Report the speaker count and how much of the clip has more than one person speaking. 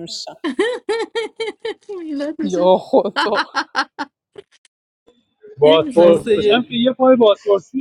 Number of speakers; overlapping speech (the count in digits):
3, about 17%